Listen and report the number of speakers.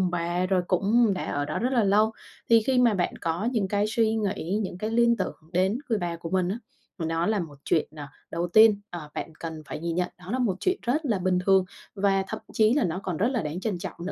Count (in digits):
1